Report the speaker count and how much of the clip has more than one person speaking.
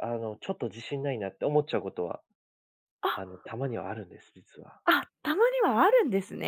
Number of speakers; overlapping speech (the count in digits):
2, about 1%